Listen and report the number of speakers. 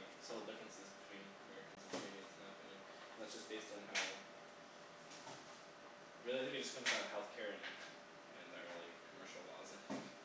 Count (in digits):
1